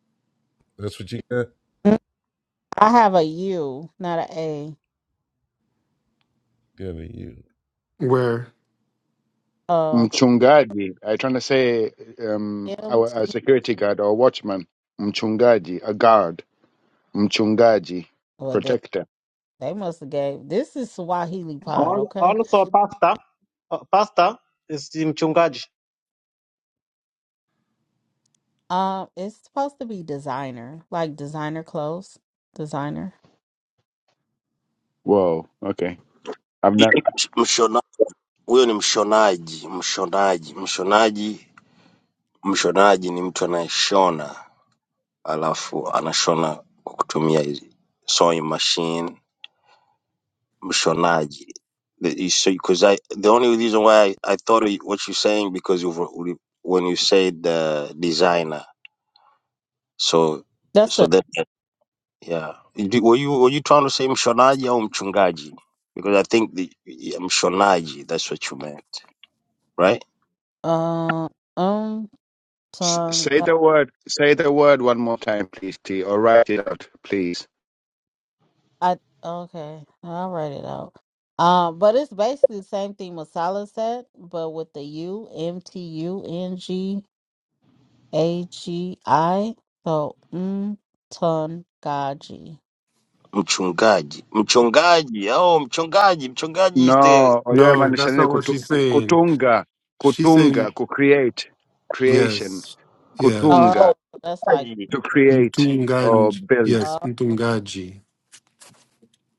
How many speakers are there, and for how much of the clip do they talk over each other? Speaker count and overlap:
6, about 7%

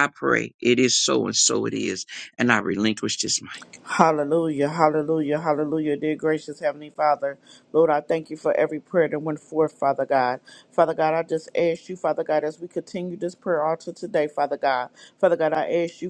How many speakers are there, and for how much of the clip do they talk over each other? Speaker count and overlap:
2, no overlap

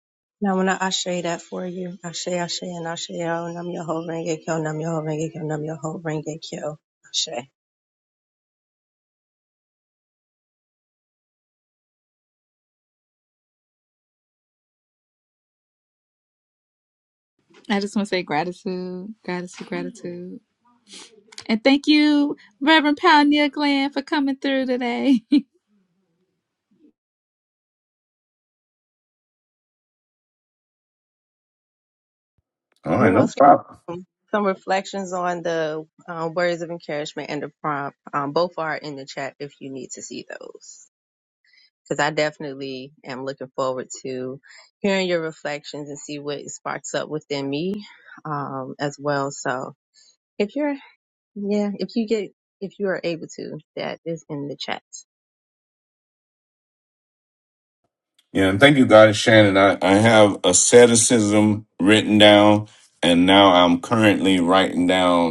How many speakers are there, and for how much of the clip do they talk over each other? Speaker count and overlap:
3, about 1%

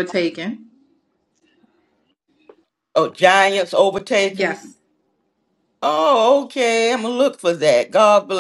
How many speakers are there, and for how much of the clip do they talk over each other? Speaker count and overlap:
2, about 3%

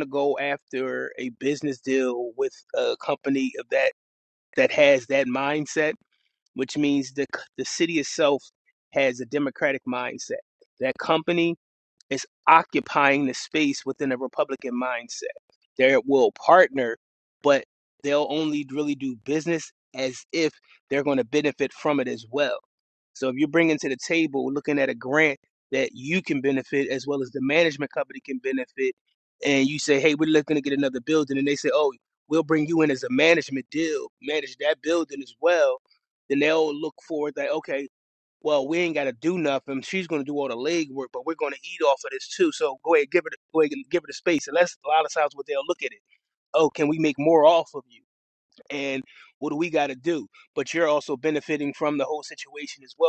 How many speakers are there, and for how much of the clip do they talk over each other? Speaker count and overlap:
1, no overlap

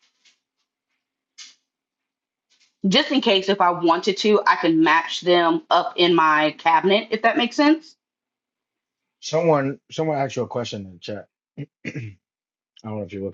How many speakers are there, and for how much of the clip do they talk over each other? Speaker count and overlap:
2, no overlap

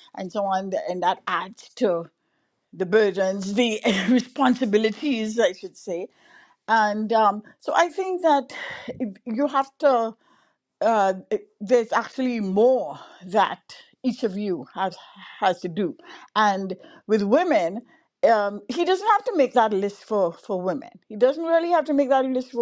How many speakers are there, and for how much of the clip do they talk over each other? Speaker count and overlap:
1, no overlap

